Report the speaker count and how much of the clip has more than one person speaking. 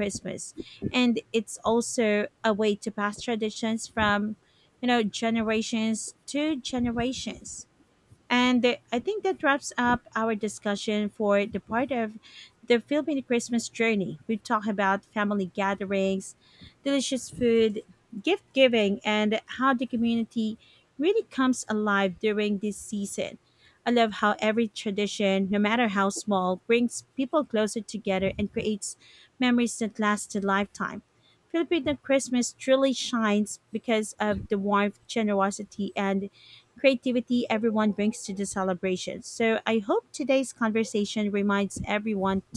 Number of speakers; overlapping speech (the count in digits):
1, no overlap